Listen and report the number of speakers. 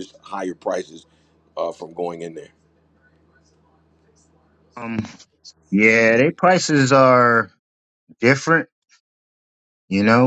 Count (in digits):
2